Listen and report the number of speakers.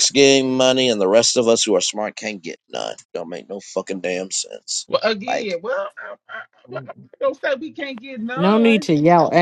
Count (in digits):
3